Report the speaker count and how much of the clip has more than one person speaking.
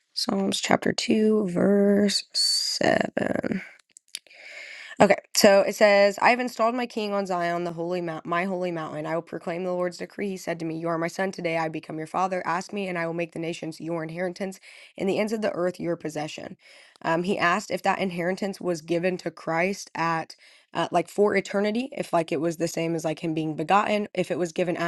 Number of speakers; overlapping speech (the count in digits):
1, no overlap